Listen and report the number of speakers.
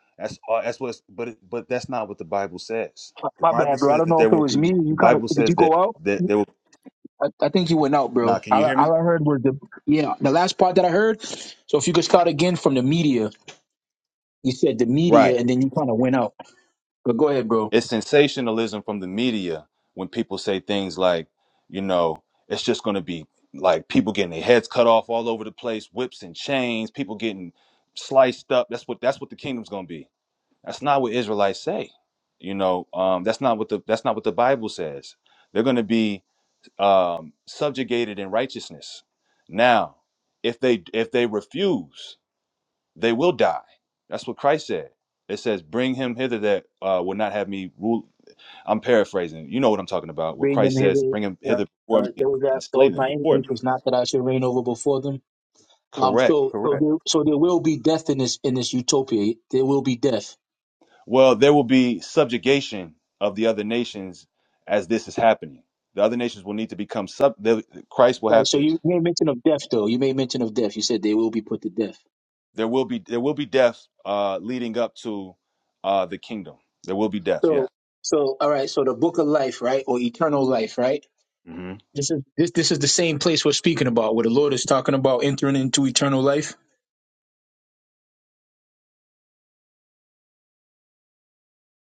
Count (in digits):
2